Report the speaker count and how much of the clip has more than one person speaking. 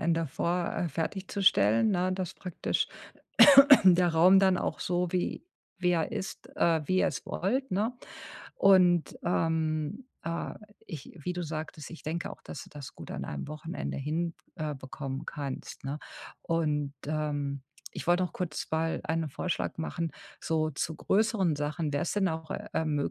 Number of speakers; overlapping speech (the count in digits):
1, no overlap